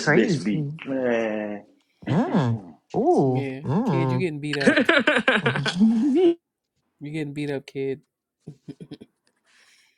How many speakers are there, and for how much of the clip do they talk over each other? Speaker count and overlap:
4, about 21%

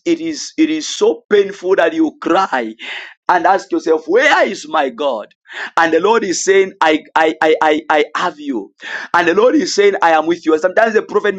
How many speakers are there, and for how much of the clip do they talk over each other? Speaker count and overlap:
1, no overlap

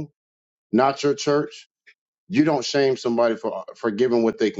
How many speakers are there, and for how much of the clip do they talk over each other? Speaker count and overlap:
1, no overlap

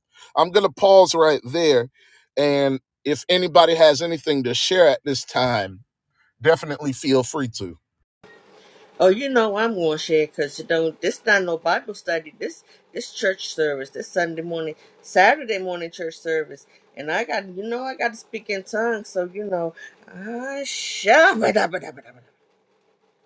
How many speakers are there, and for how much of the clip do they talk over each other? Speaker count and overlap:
2, no overlap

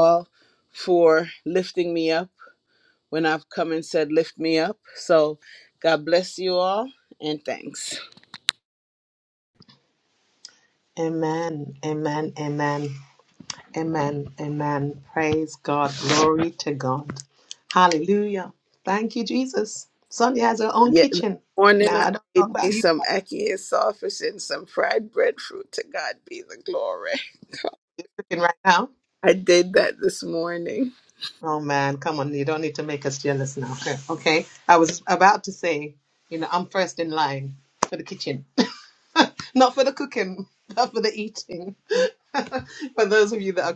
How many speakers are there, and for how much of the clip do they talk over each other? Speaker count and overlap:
2, about 3%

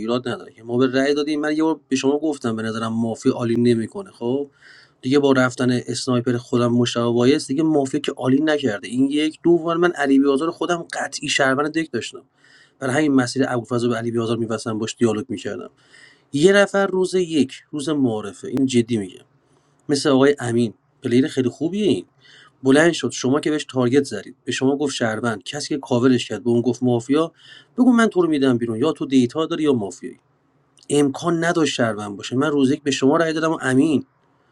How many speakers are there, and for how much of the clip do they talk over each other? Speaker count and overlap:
1, no overlap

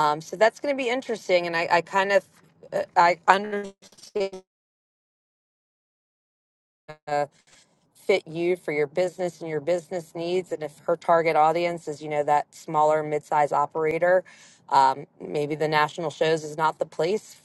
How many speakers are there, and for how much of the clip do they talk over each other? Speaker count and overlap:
1, no overlap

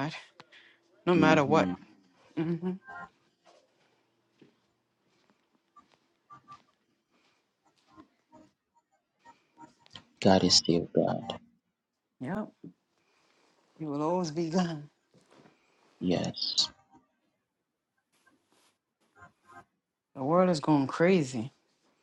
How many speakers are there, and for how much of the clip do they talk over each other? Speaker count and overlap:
2, about 2%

